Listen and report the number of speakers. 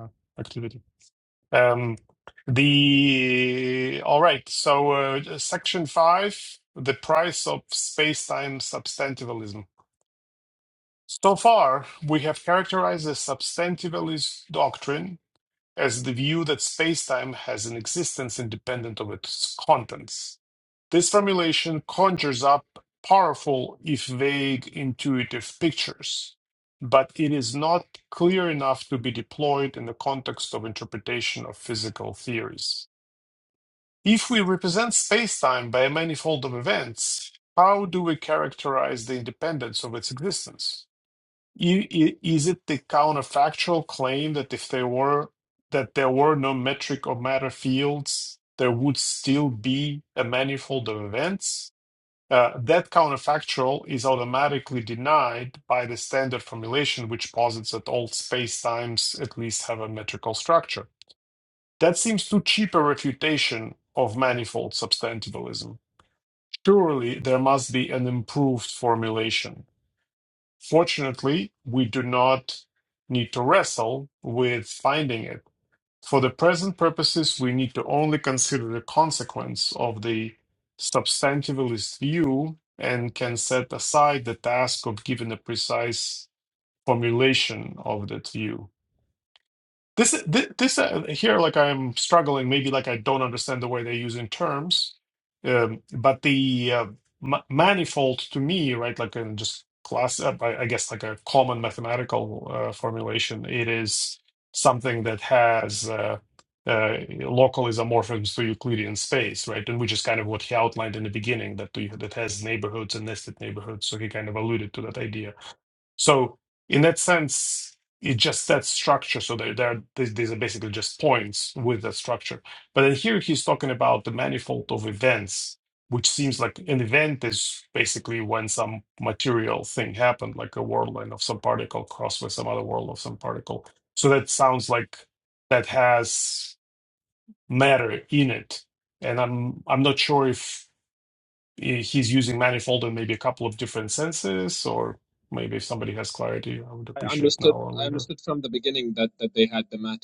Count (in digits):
2